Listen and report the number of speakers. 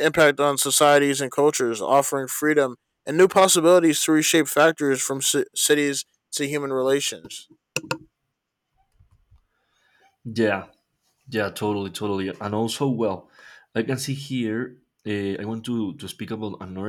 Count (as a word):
two